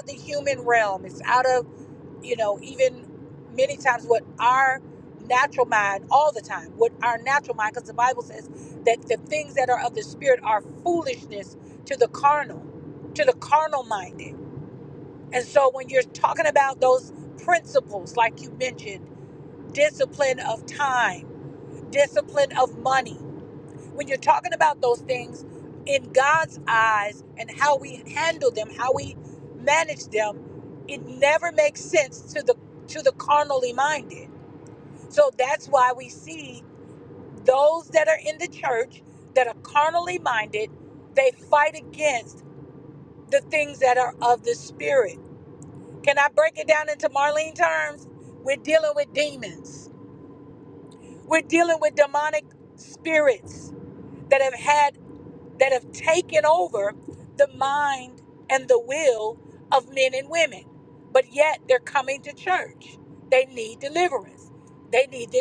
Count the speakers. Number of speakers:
1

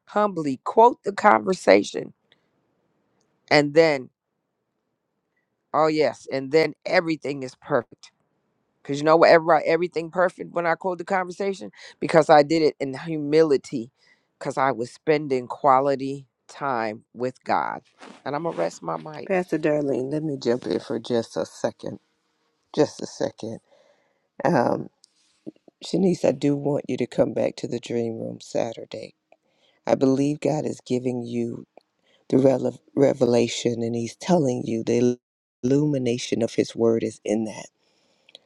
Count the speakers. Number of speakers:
2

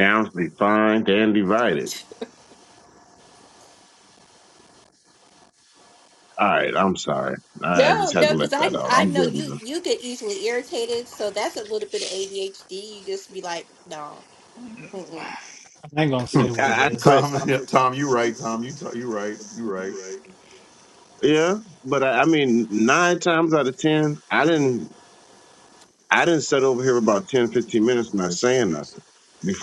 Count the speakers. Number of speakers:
4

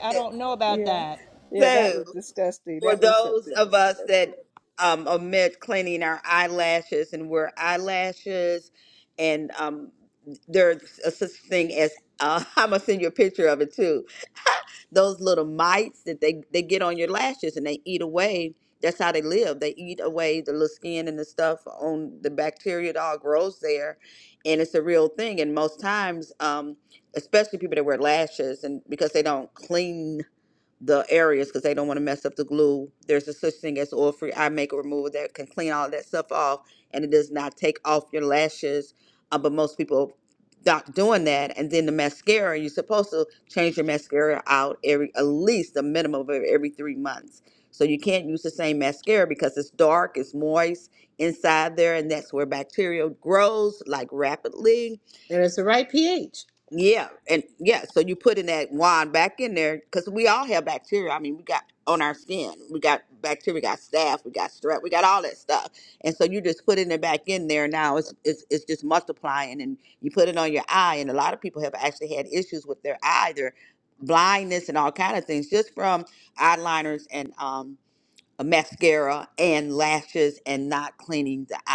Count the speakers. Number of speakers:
4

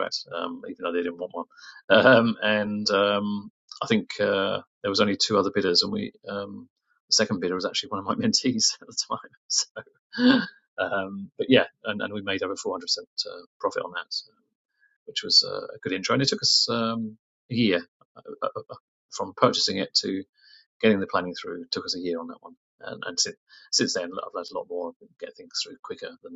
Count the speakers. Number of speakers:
1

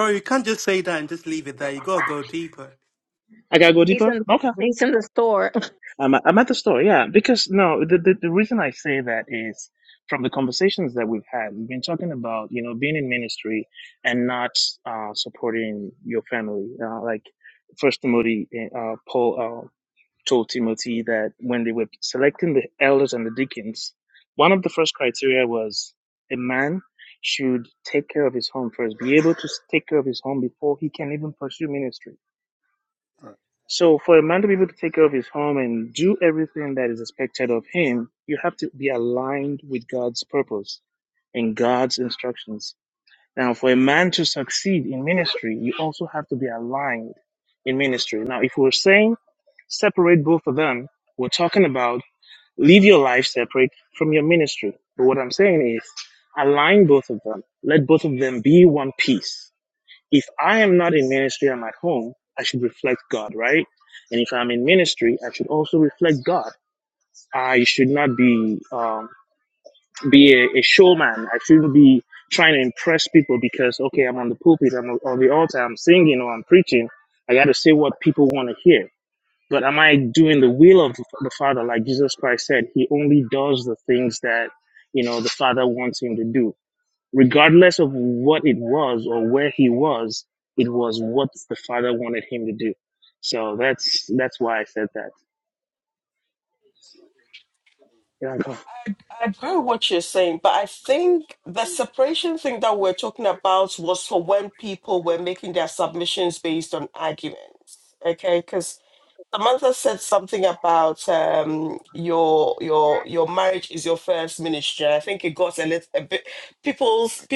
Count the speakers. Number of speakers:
4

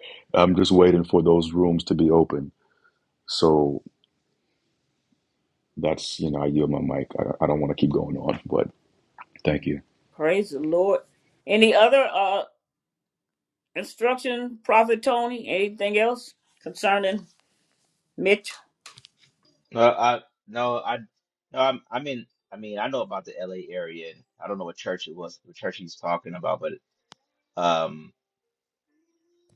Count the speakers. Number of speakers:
3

